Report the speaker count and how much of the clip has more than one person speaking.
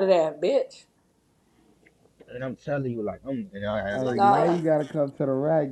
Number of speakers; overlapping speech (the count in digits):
3, about 12%